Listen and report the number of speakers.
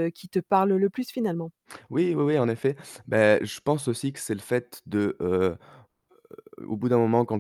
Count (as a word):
two